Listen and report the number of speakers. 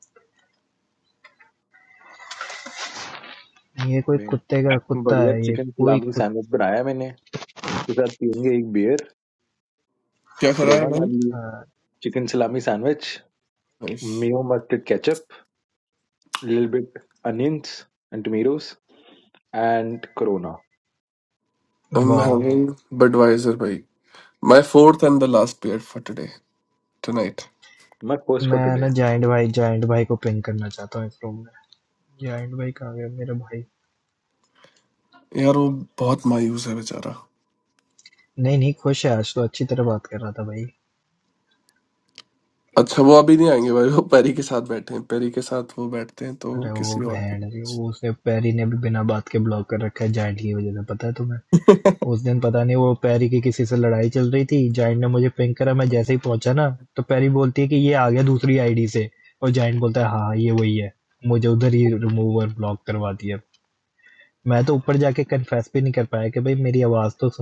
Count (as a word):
three